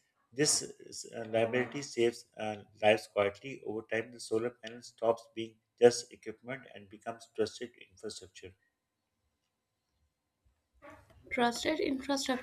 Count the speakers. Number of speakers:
2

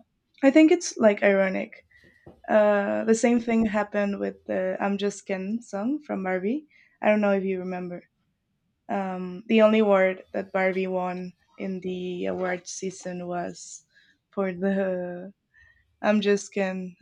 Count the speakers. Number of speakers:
1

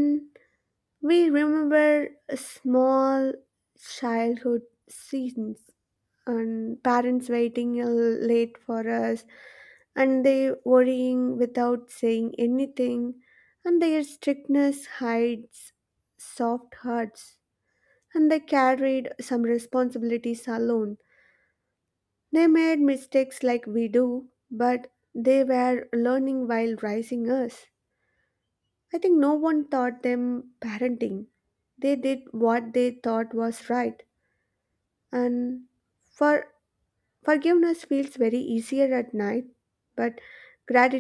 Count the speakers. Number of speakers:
1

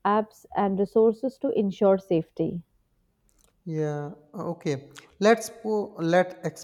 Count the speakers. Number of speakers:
2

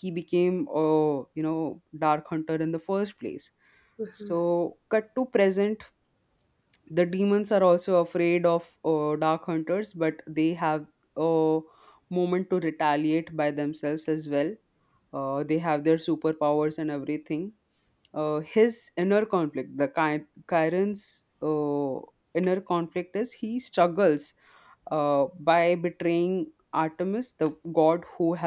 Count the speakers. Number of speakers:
1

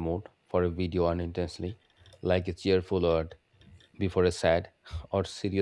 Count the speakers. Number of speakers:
1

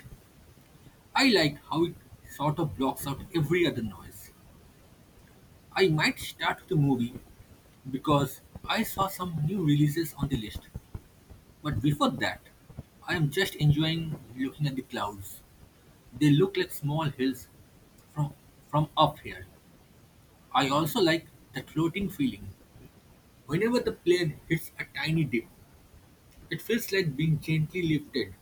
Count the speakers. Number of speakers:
1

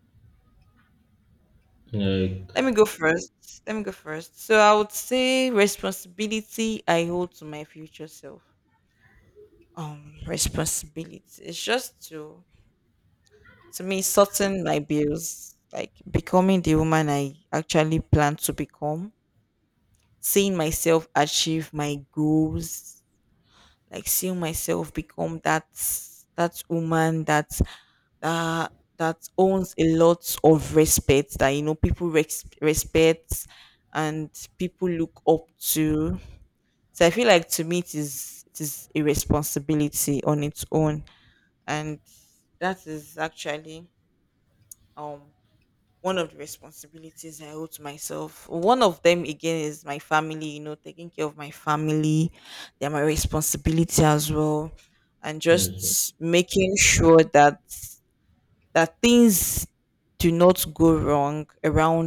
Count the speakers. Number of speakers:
2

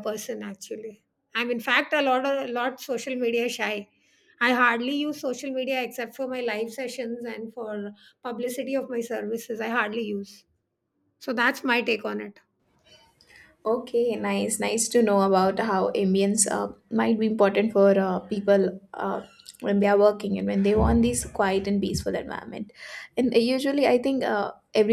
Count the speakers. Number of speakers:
2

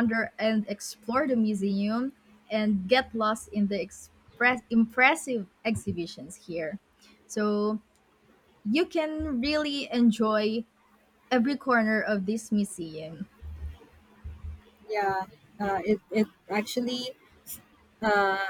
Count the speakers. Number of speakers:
2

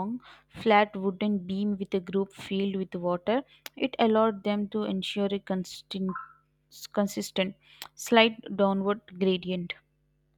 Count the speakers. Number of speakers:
1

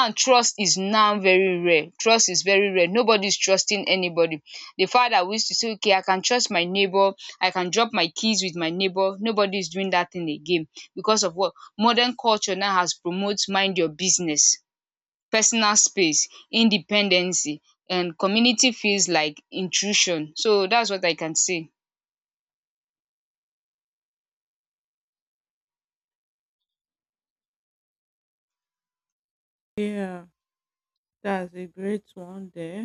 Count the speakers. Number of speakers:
2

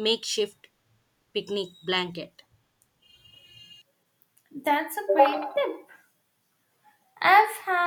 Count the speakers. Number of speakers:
2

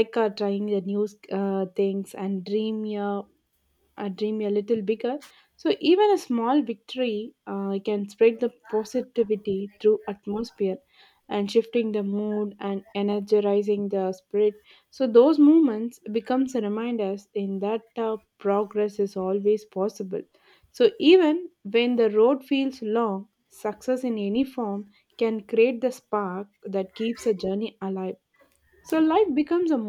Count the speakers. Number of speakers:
1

